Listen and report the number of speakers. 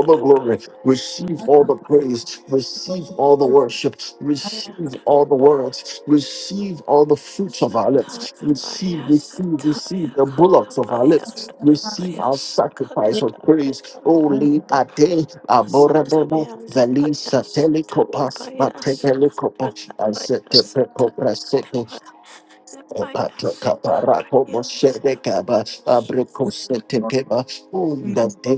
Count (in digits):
2